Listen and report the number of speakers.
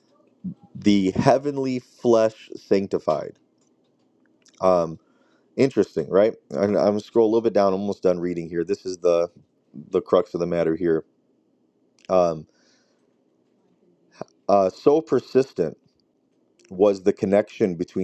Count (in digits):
1